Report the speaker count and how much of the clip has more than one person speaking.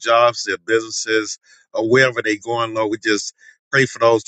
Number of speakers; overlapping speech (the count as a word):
one, no overlap